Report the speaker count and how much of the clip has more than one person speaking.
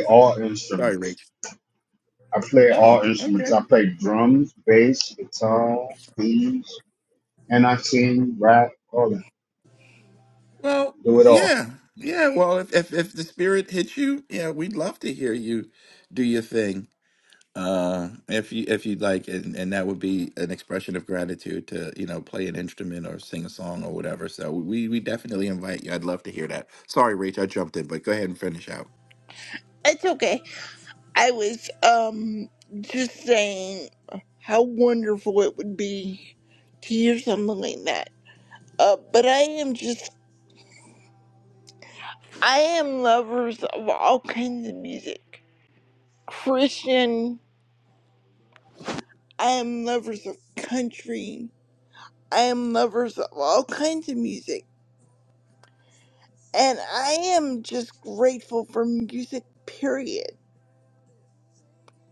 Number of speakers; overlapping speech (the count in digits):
3, about 2%